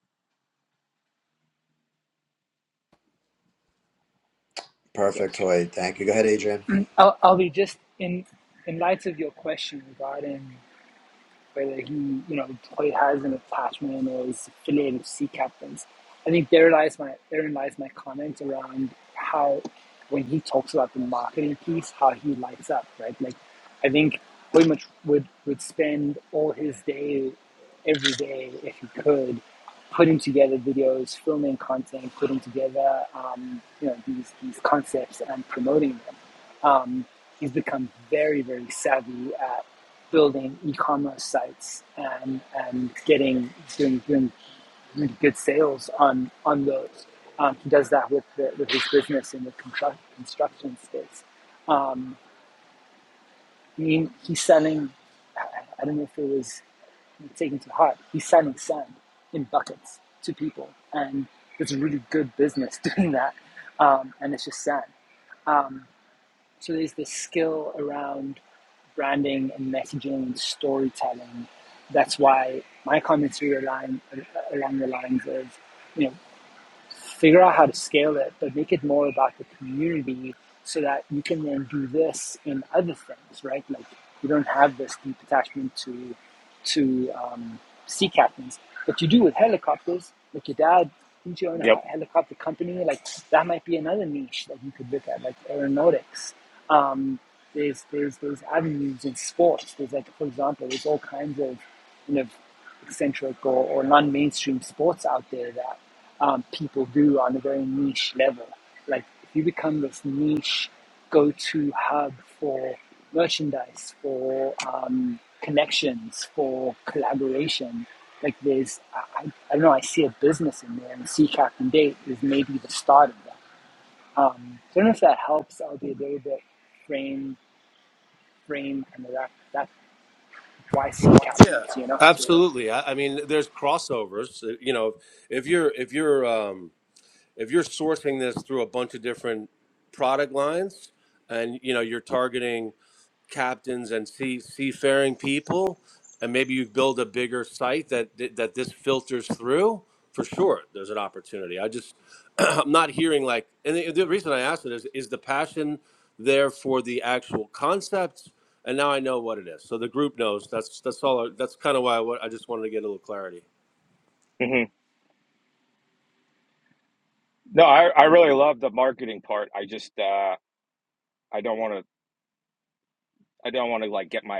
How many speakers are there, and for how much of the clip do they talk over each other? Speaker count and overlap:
4, about 1%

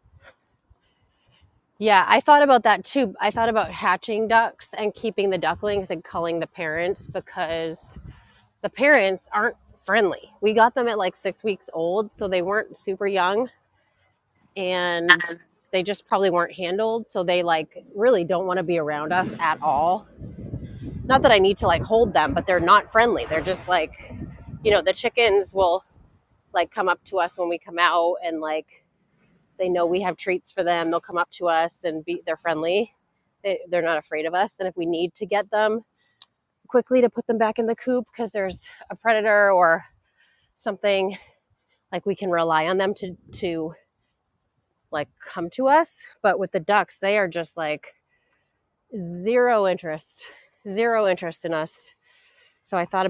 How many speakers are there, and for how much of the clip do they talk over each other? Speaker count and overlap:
1, no overlap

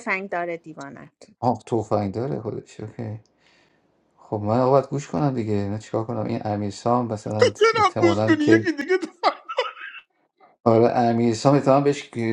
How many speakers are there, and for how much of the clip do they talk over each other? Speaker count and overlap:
3, about 10%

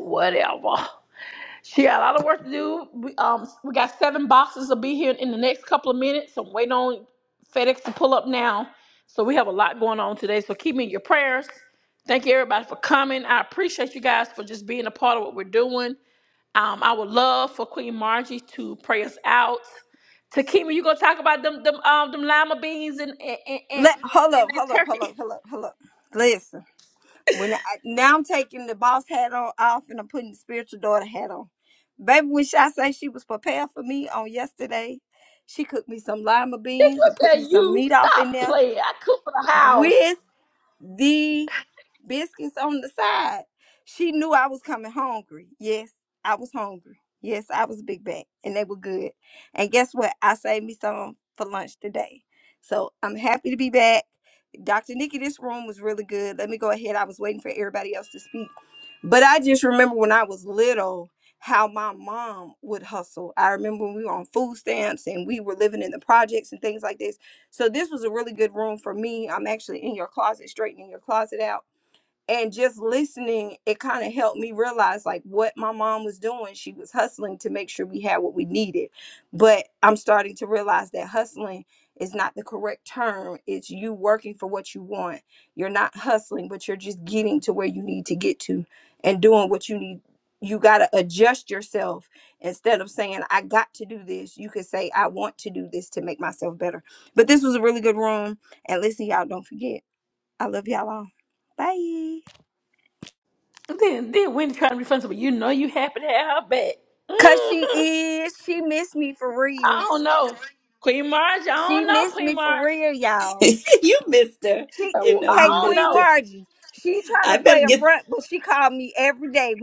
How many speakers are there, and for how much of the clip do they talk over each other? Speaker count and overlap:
3, about 5%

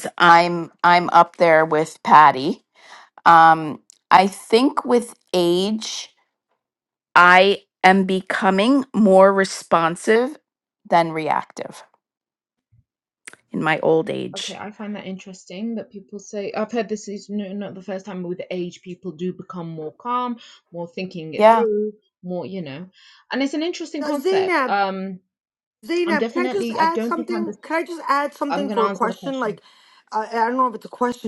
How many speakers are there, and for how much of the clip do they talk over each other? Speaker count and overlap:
3, about 12%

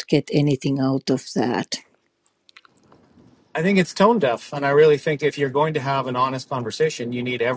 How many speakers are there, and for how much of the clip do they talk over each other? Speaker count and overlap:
2, no overlap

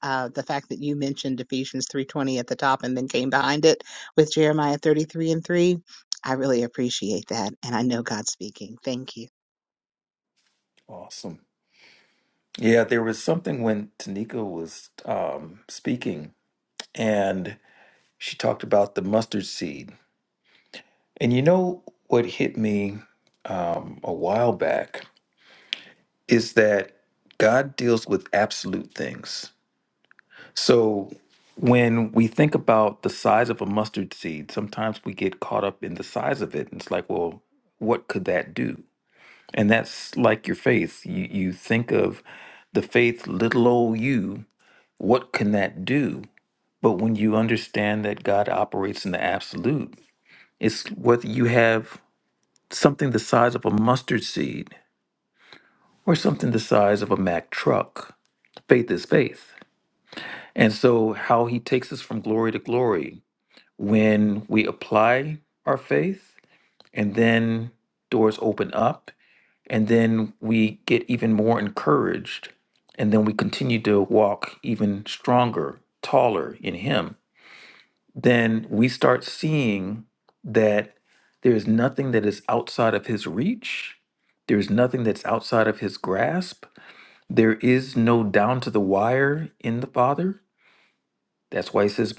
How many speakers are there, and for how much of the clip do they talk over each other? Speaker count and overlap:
2, no overlap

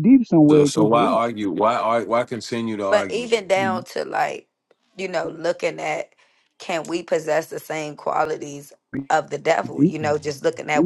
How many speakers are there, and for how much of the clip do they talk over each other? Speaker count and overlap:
3, about 17%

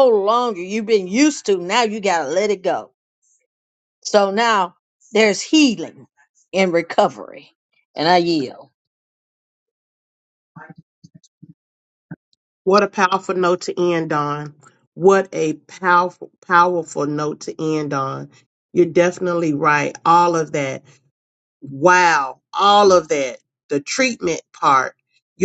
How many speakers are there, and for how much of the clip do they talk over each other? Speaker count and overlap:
2, no overlap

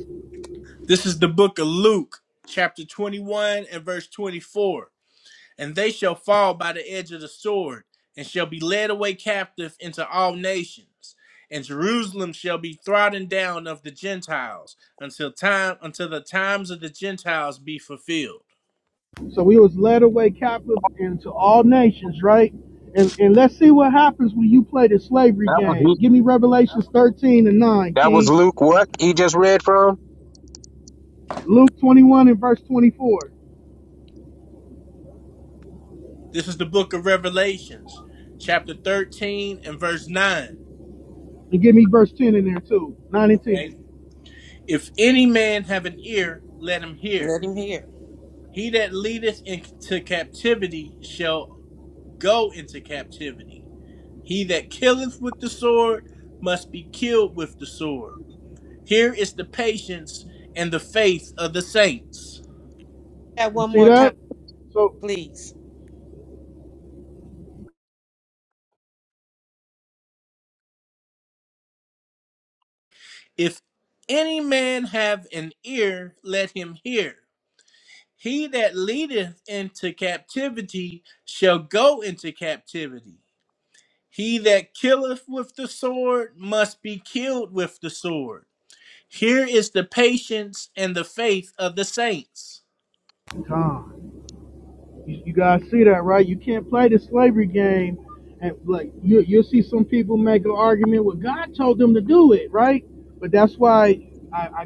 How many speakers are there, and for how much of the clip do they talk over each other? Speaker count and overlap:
4, about 2%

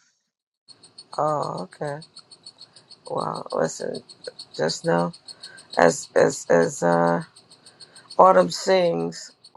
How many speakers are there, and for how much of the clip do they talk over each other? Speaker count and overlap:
1, no overlap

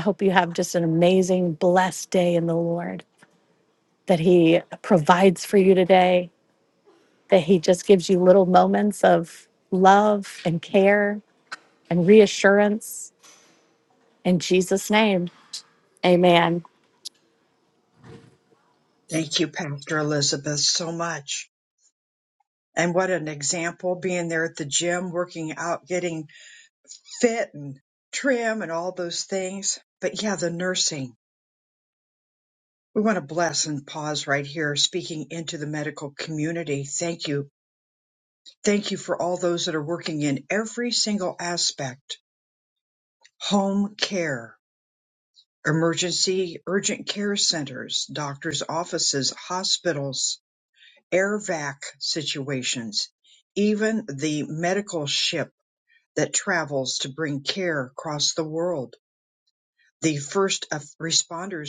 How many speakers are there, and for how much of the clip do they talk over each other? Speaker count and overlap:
2, no overlap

